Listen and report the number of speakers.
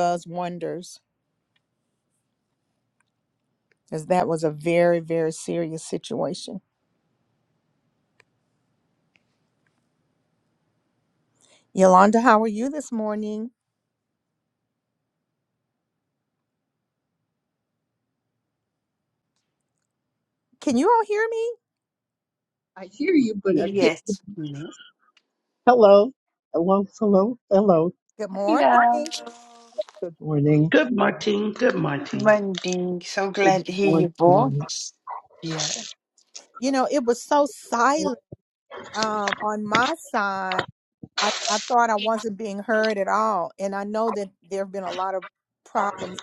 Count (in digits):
4